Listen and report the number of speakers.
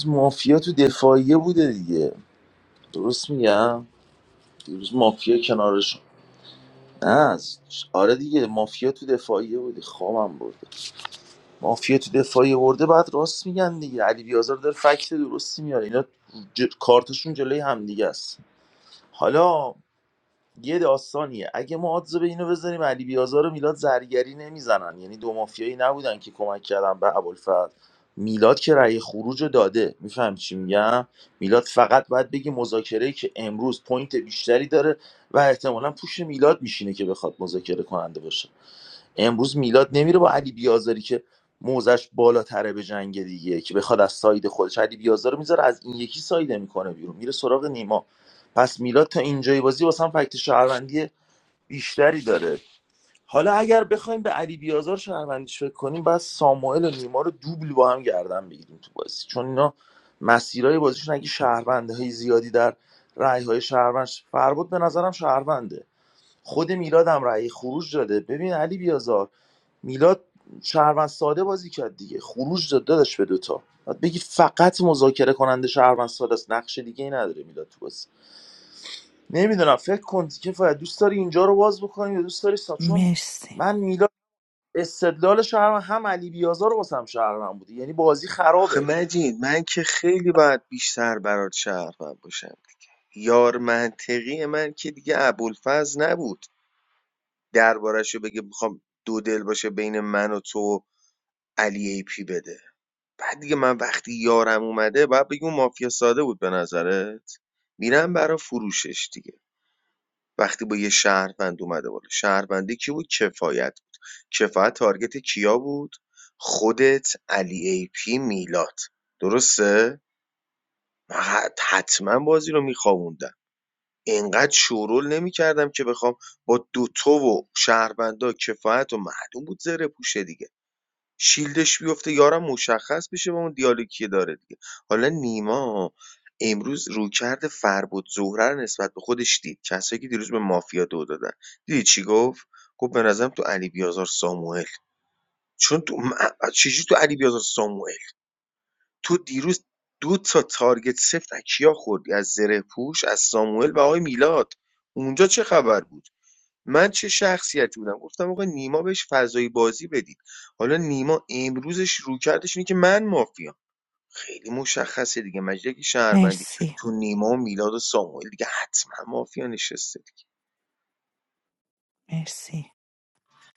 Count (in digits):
3